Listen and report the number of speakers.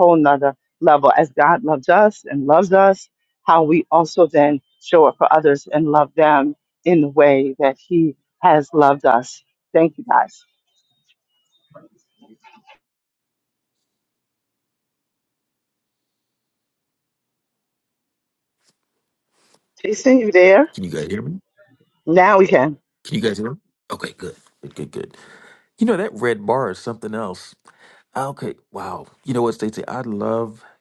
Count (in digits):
2